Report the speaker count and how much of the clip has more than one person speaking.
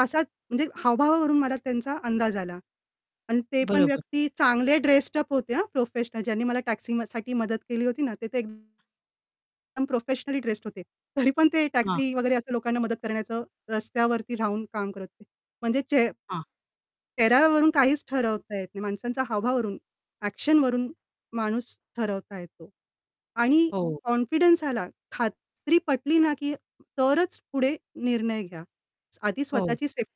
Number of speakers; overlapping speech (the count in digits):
2, about 3%